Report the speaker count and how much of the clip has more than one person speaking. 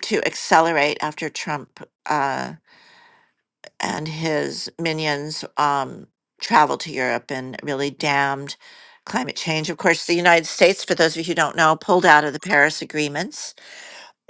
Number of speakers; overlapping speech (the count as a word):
one, no overlap